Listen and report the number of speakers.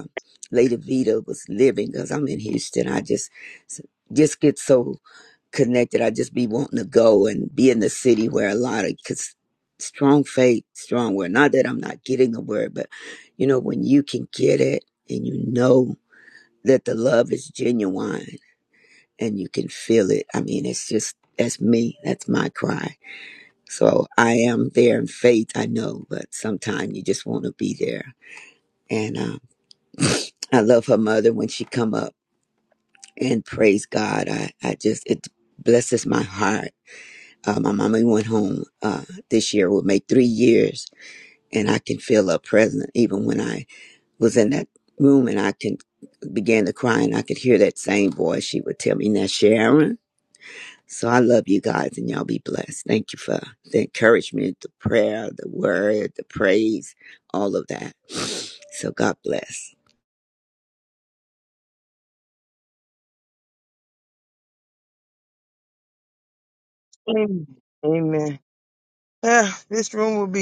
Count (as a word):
two